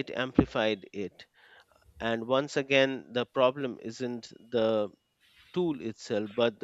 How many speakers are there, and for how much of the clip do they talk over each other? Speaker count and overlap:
one, no overlap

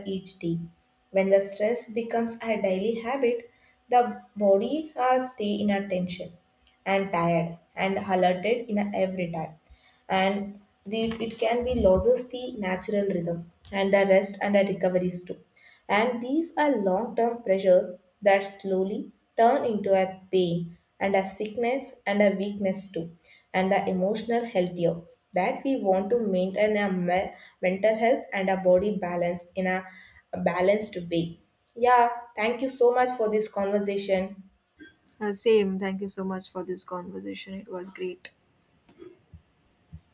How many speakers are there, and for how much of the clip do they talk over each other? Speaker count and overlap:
two, no overlap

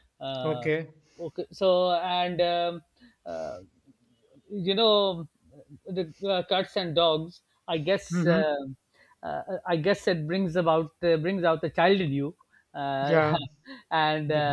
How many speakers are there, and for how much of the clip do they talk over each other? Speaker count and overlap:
two, about 7%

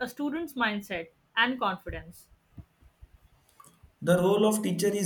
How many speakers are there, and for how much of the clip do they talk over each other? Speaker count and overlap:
two, no overlap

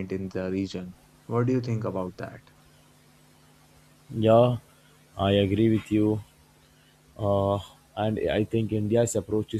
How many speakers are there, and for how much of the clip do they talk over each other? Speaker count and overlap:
two, no overlap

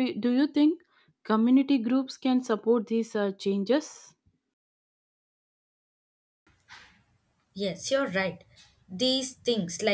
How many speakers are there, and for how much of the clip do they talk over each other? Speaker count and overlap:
two, no overlap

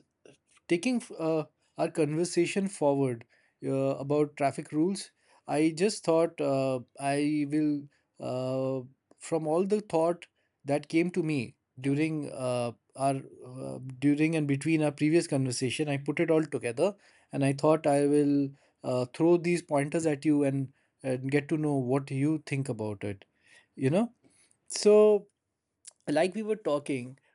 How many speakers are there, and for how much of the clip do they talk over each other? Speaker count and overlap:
one, no overlap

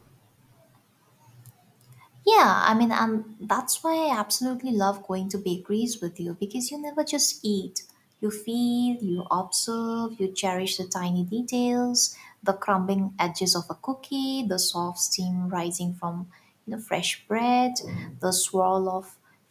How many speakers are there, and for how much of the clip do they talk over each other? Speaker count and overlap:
one, no overlap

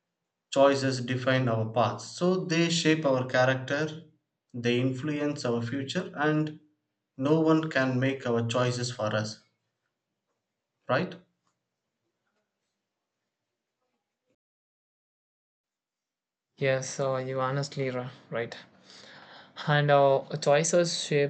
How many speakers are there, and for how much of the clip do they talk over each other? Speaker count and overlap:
two, no overlap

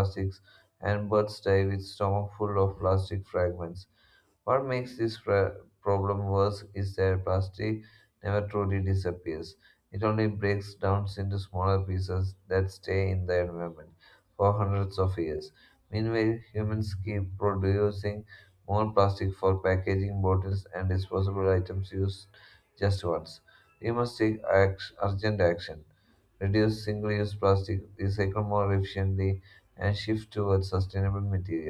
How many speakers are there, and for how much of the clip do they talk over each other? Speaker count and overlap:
one, no overlap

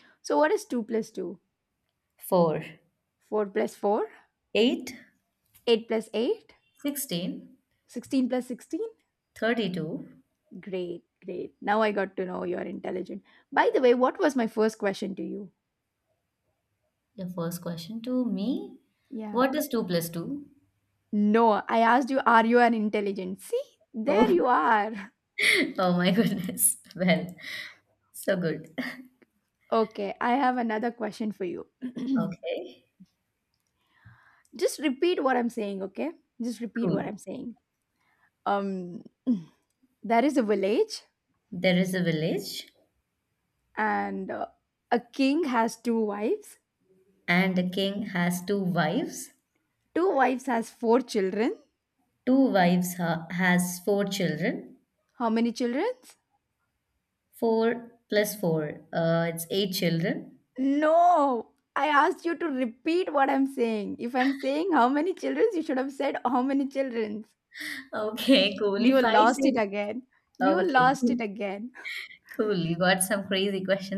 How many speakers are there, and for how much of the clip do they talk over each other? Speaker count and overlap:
two, about 3%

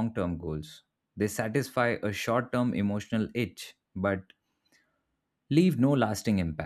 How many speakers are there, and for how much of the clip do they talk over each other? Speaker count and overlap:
one, no overlap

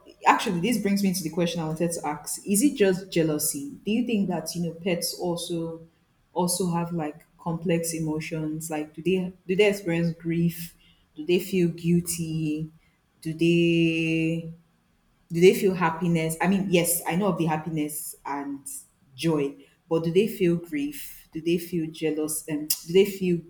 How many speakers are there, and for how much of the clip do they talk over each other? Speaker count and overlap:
one, no overlap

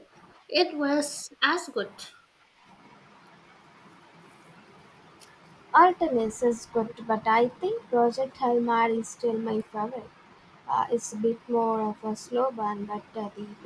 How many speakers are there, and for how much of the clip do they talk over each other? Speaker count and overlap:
two, no overlap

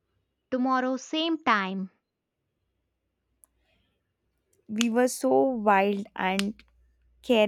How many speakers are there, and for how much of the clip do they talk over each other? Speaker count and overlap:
two, no overlap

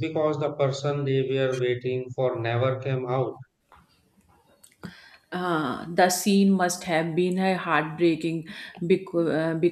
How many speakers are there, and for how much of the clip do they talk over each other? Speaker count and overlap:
two, no overlap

